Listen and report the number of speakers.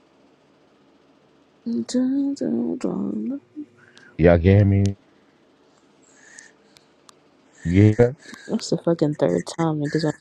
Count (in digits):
2